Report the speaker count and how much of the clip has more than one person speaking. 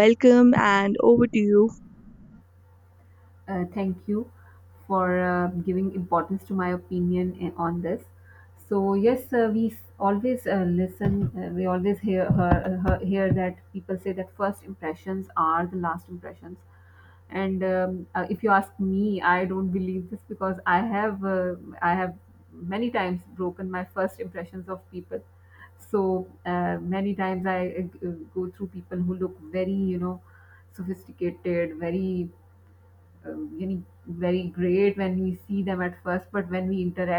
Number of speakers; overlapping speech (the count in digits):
2, no overlap